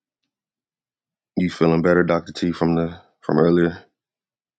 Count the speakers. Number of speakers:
1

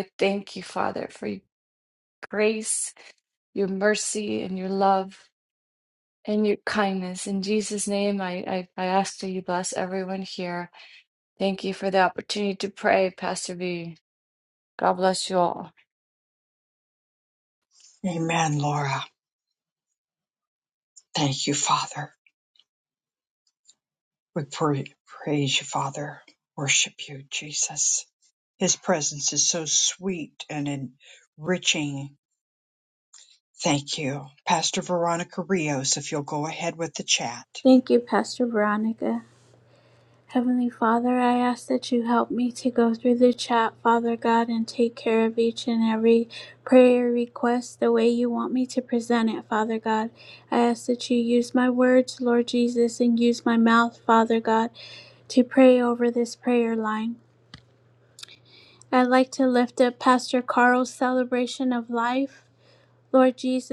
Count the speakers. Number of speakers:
3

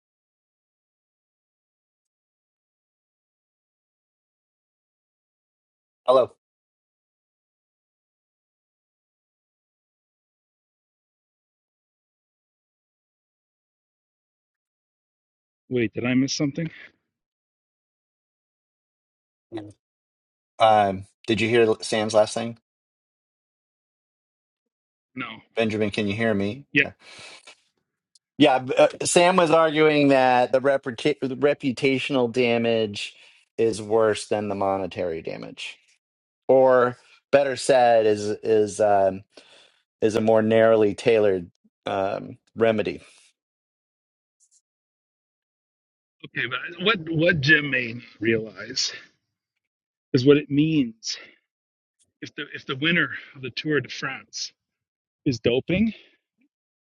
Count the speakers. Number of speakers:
2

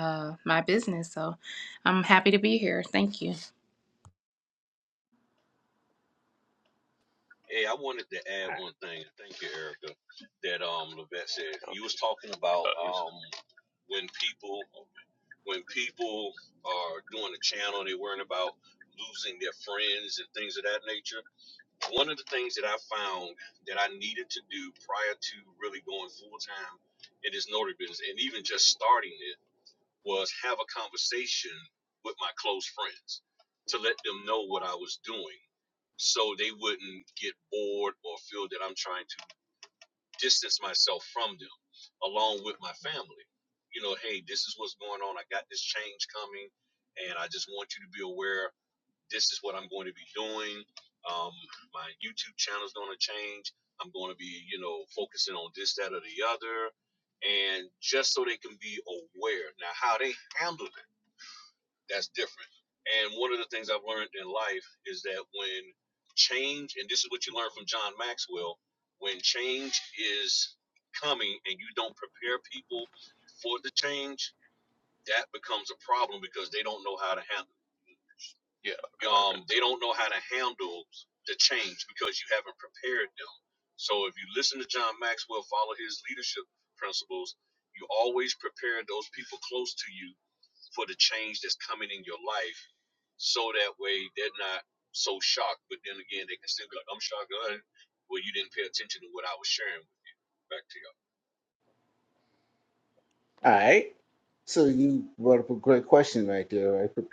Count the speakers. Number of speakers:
3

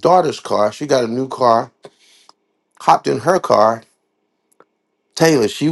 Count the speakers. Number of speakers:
1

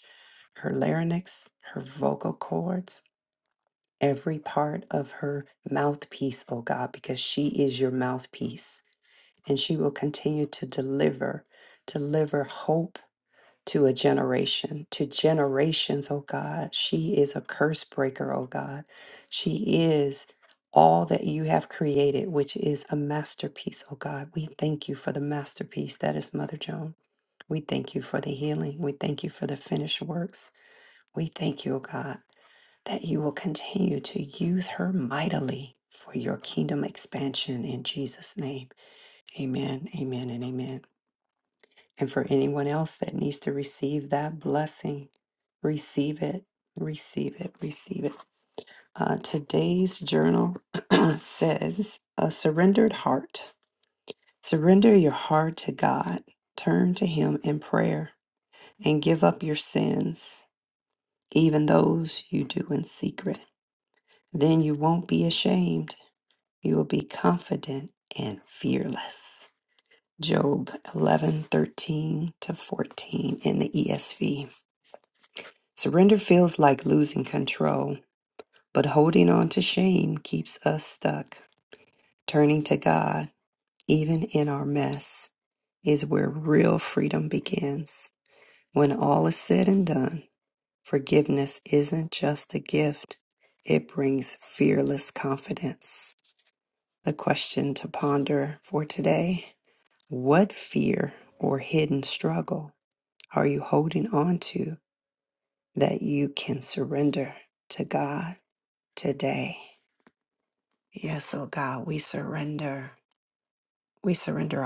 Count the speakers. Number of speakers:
1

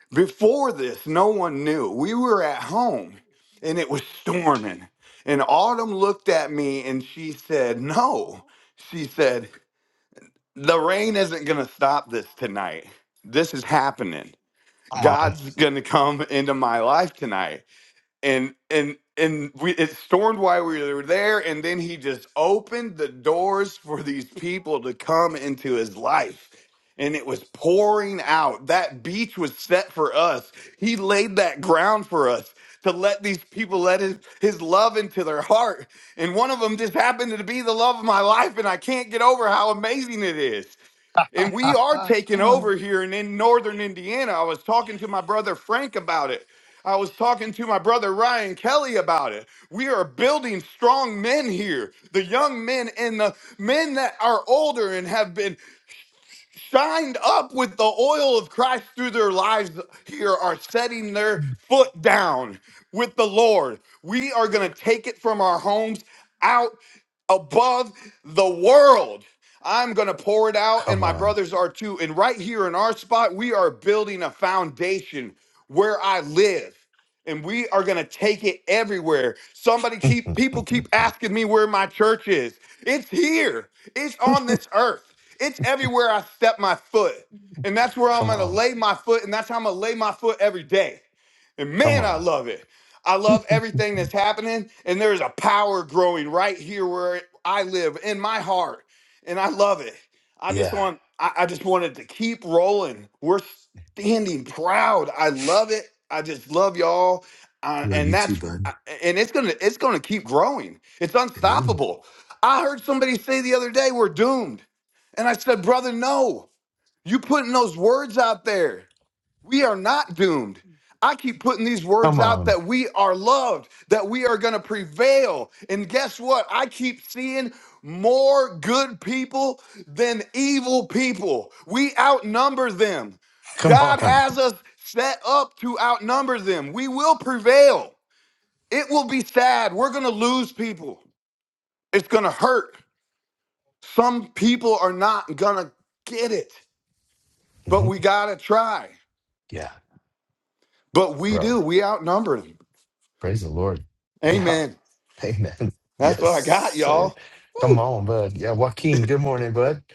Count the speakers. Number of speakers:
2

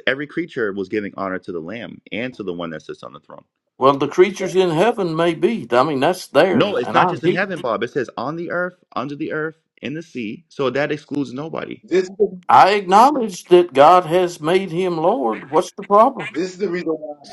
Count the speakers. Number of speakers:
3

